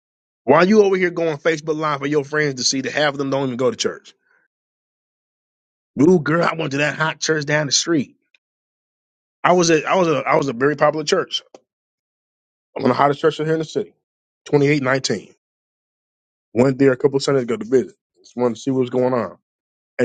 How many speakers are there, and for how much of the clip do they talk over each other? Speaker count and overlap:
1, no overlap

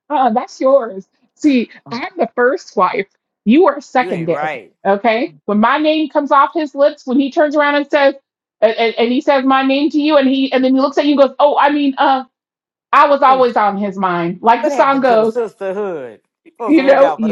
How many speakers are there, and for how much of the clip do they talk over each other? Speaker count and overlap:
2, about 12%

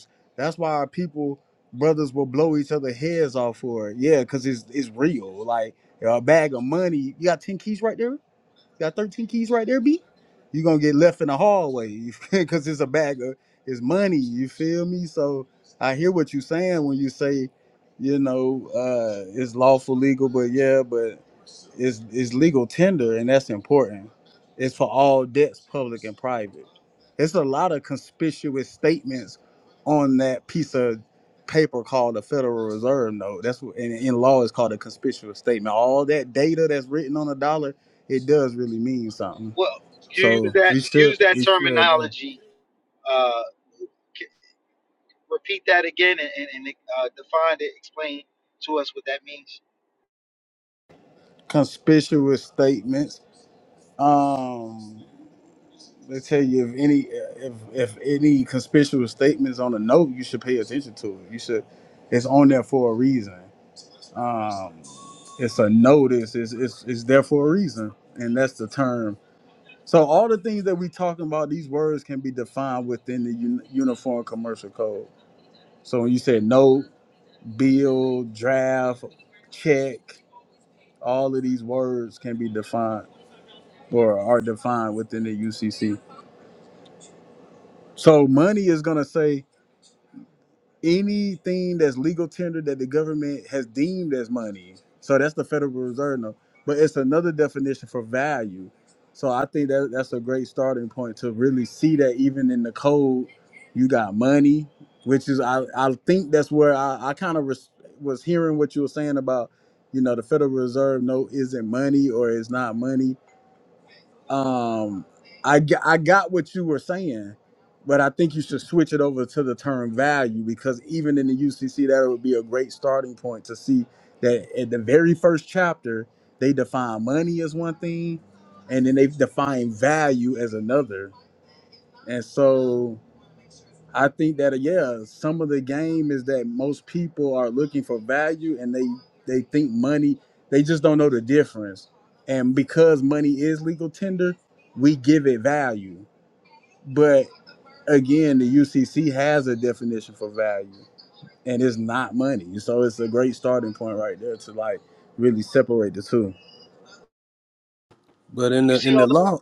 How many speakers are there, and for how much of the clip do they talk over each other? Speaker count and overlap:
3, about 1%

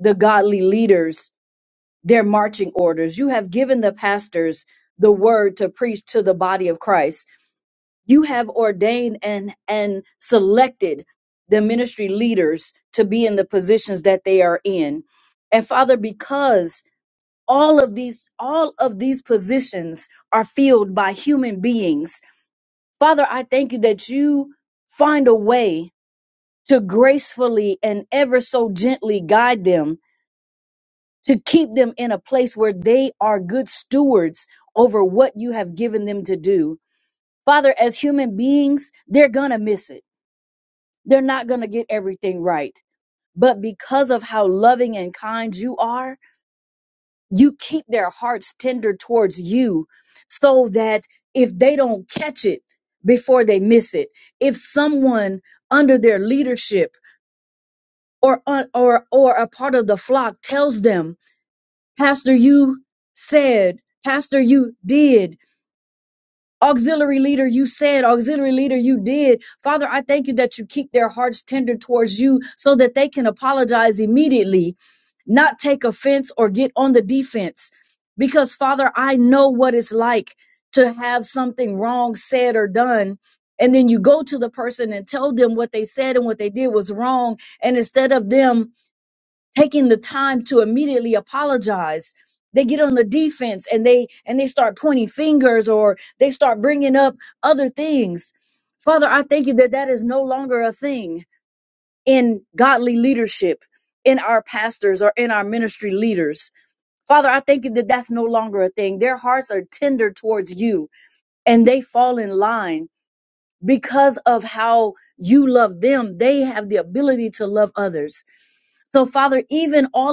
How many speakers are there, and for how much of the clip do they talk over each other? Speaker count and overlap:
1, no overlap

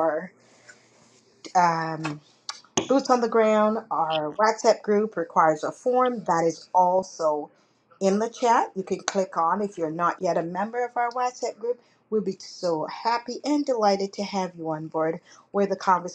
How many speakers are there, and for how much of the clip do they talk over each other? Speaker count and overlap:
1, no overlap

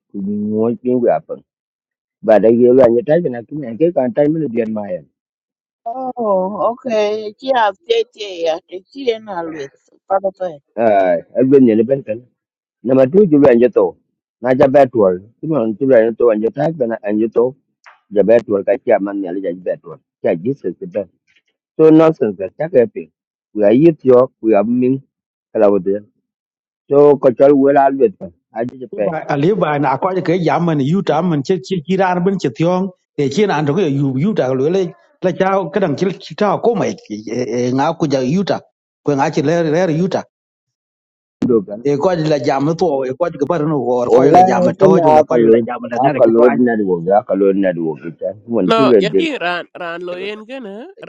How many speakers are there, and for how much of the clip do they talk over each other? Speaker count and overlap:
4, about 5%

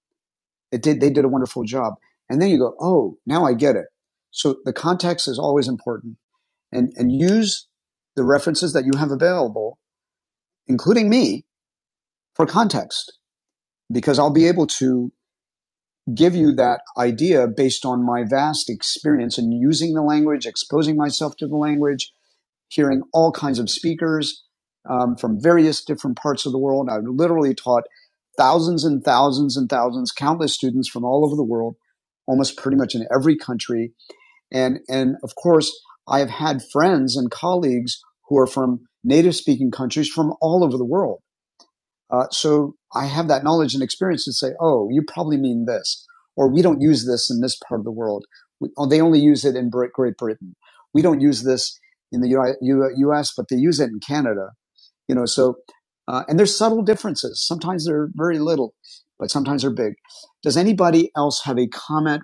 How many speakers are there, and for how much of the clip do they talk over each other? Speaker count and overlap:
1, no overlap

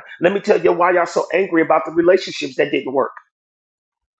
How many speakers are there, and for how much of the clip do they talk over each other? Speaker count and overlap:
1, no overlap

